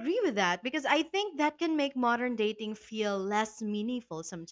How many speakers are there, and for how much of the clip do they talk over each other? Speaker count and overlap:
1, no overlap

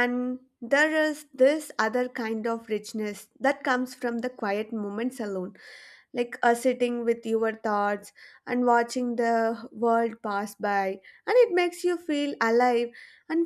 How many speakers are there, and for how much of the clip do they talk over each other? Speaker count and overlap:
1, no overlap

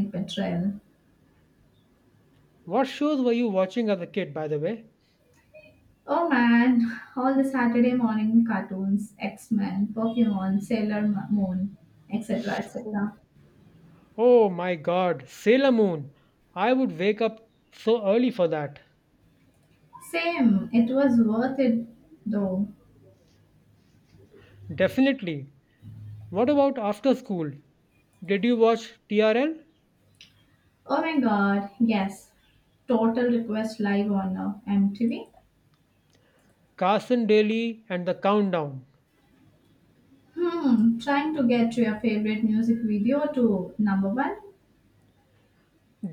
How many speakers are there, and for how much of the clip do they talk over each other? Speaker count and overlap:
2, no overlap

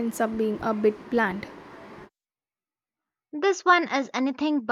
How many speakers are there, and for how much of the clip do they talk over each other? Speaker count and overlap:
2, no overlap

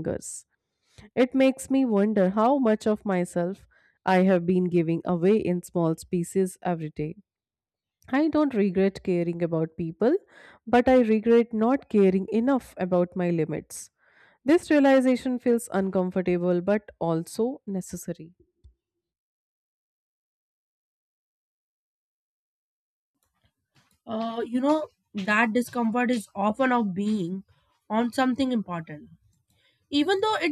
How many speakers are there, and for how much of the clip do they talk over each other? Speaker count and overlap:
2, no overlap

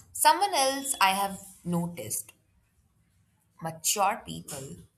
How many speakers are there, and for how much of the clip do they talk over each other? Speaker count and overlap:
1, no overlap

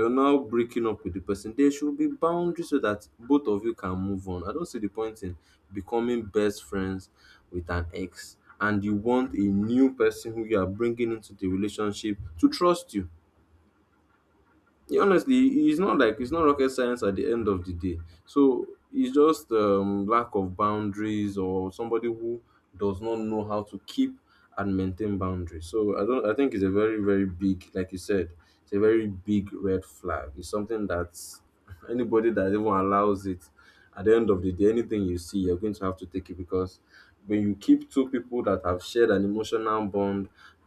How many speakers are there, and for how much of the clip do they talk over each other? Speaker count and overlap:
1, no overlap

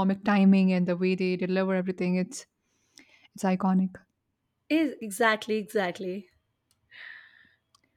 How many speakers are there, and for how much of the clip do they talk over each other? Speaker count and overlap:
2, no overlap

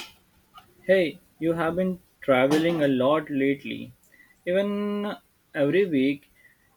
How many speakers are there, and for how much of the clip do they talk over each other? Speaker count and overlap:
1, no overlap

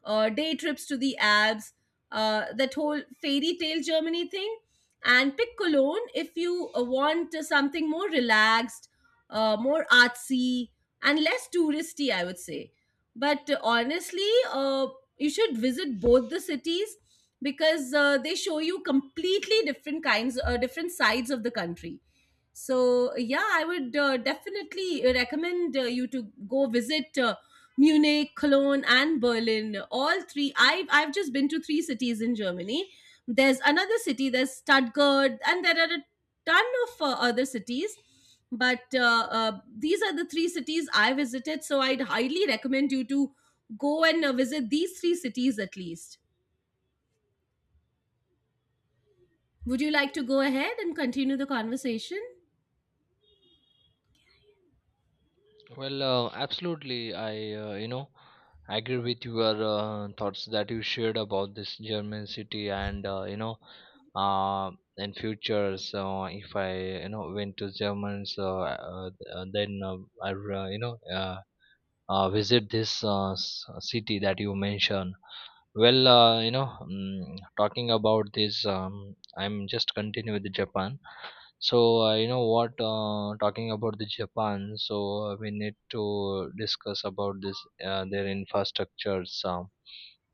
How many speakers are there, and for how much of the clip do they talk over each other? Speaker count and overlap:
2, no overlap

